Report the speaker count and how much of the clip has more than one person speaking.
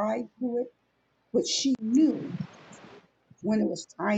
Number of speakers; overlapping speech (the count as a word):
one, no overlap